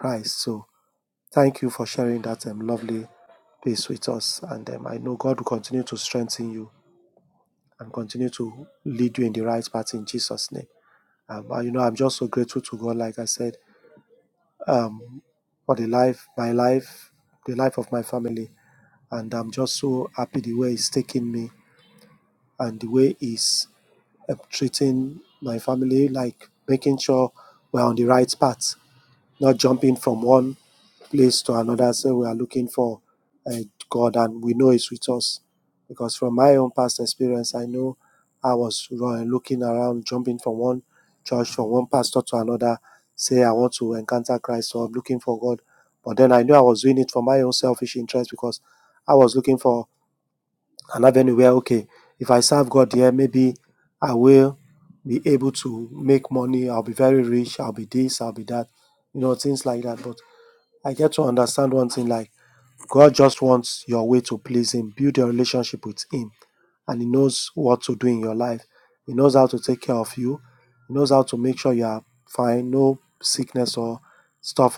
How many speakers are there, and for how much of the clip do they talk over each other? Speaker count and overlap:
one, no overlap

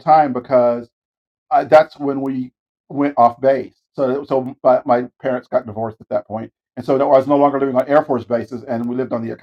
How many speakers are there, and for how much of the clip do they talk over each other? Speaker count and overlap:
one, no overlap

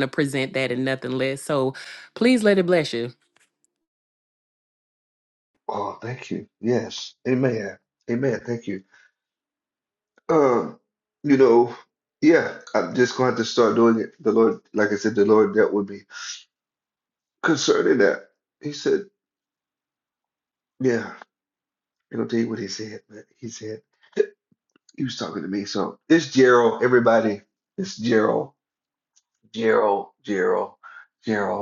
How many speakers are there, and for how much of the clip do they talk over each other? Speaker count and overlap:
two, no overlap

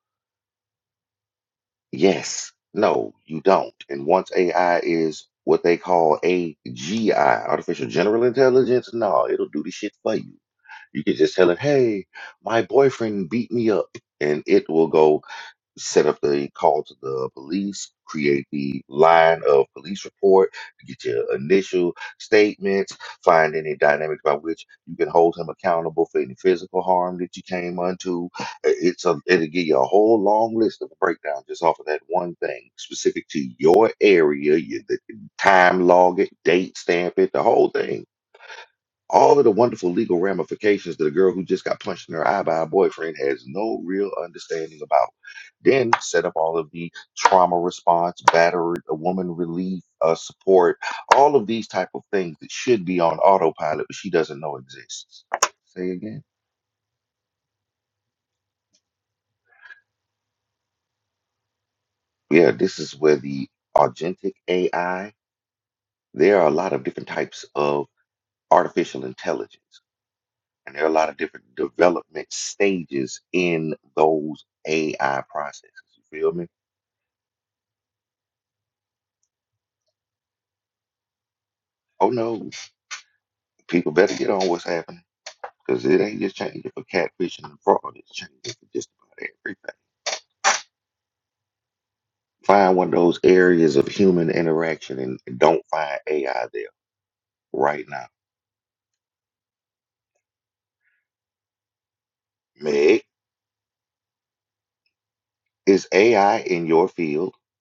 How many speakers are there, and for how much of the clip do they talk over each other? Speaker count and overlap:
one, no overlap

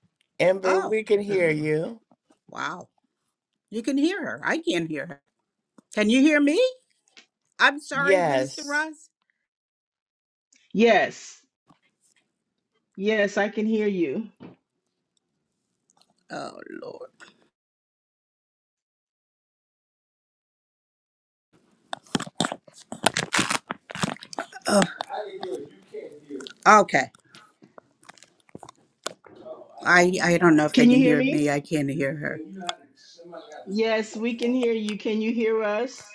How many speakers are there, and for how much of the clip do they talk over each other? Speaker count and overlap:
three, about 5%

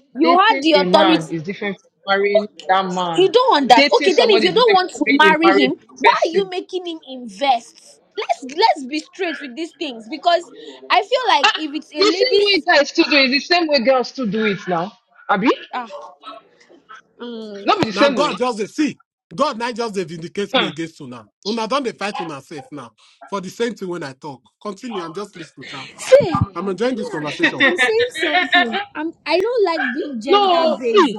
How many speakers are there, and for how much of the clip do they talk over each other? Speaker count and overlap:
three, about 19%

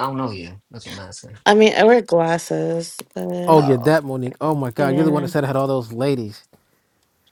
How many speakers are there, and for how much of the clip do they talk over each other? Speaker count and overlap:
three, about 14%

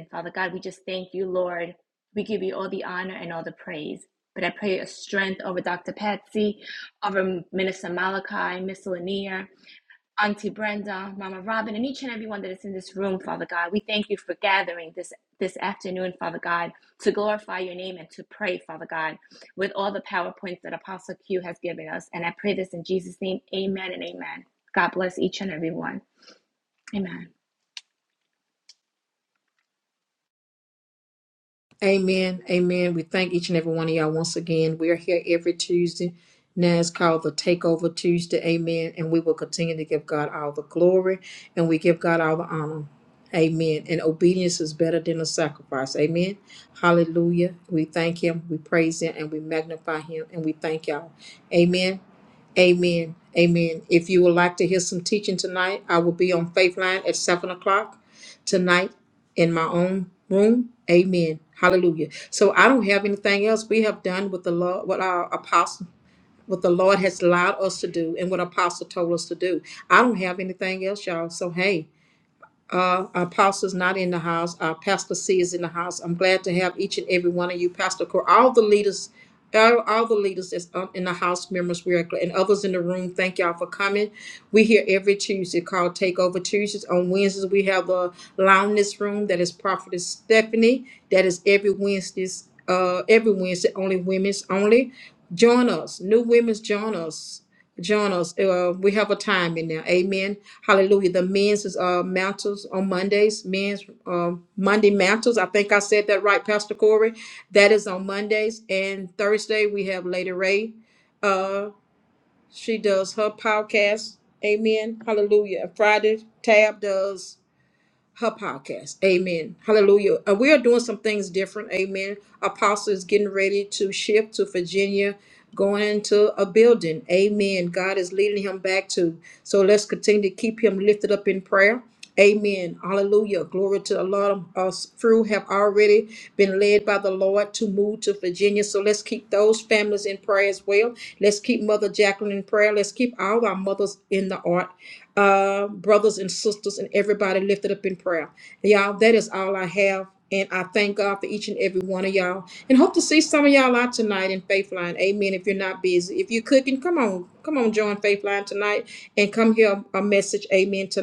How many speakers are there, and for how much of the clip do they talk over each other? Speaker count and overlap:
two, no overlap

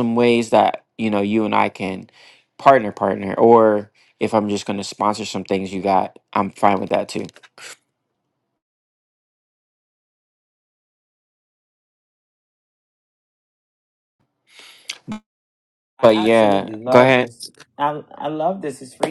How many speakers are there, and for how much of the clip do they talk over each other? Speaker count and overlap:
two, about 7%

